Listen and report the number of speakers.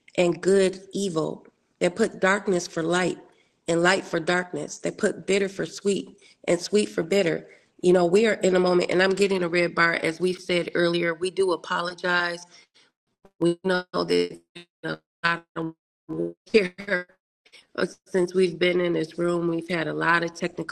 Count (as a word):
one